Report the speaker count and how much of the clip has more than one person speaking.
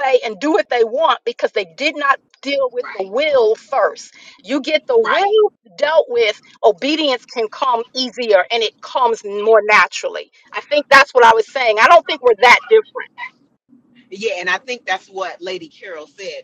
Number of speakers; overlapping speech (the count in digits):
2, about 4%